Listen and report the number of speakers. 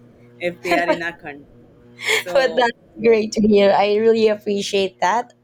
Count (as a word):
two